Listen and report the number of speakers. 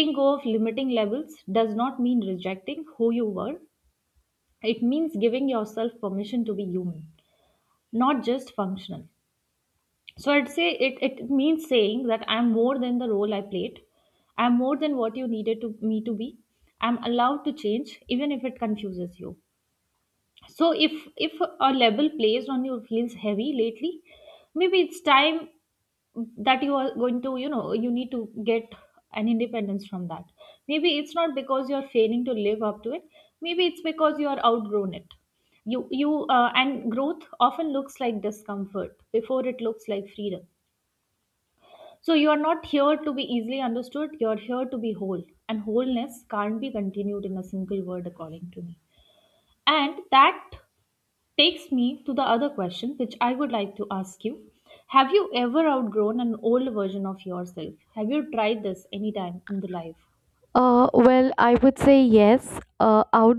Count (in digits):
2